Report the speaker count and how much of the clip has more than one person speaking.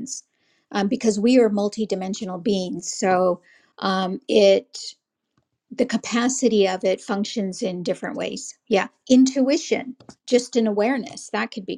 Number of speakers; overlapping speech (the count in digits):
1, no overlap